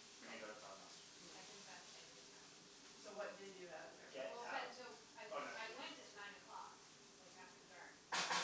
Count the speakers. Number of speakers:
three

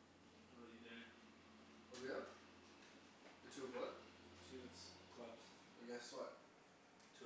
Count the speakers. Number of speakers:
two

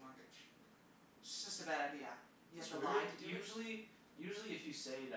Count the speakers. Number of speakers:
two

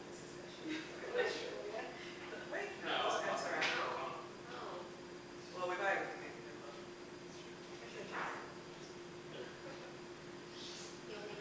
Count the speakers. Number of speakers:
three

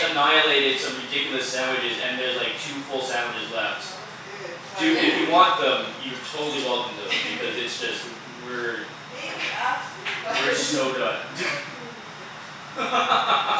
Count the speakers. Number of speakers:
one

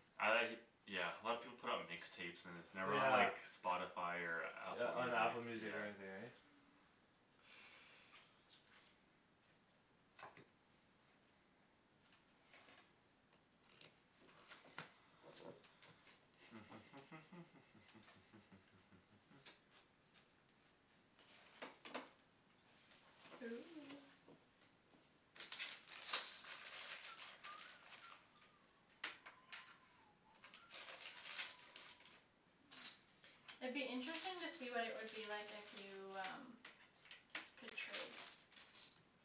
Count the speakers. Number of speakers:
three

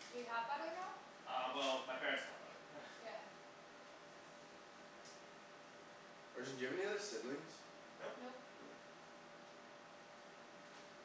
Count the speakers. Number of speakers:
three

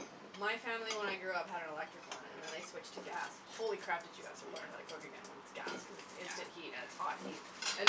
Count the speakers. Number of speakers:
one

